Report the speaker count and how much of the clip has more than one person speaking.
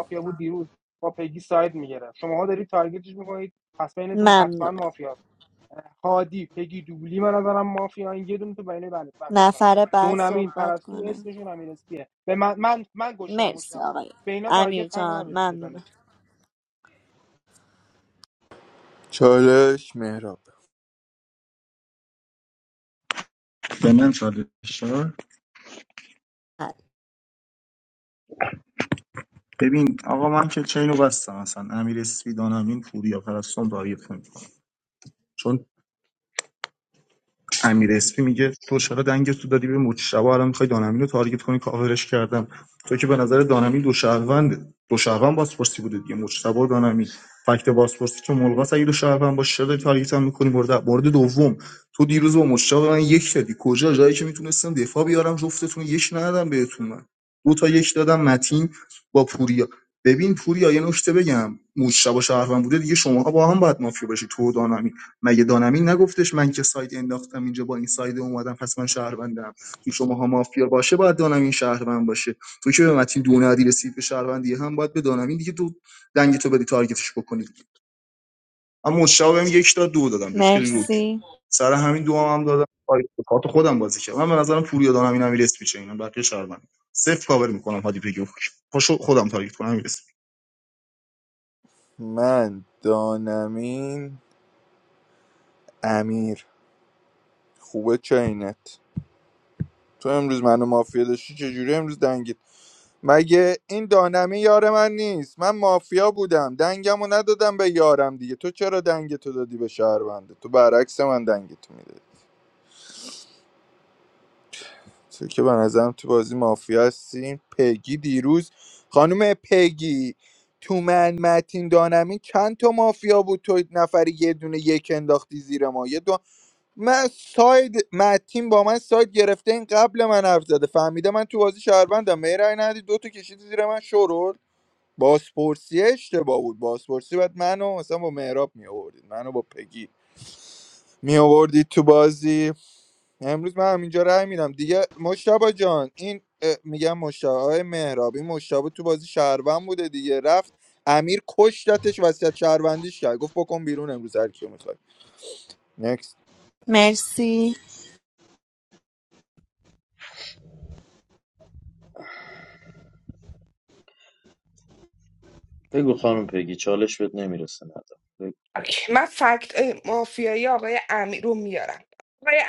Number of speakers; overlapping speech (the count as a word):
six, about 3%